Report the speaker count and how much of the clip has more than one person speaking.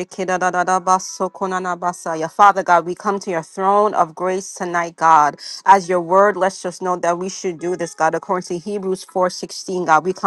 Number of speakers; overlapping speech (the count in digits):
1, no overlap